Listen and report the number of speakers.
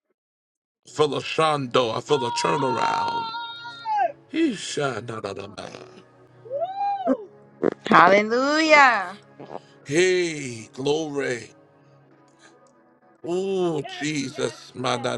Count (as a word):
three